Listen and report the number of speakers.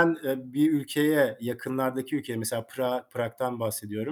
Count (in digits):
1